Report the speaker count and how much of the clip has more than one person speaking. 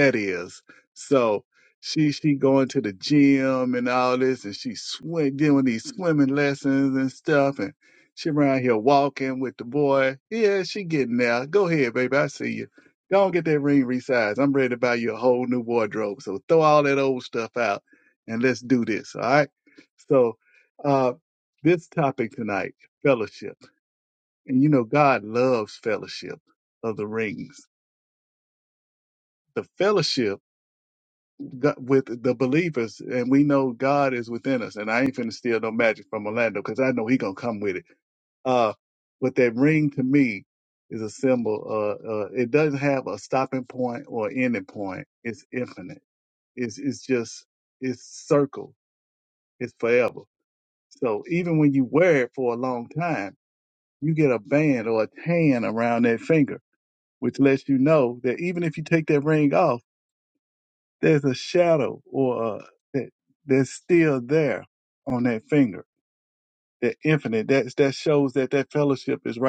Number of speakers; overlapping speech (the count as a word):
one, no overlap